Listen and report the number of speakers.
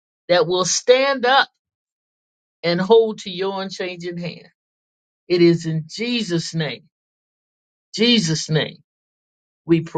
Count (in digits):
1